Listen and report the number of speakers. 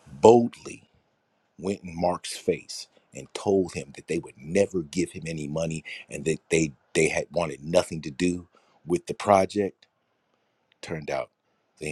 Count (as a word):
one